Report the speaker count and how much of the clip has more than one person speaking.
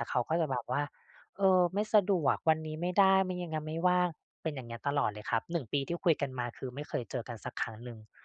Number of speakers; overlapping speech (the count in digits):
1, no overlap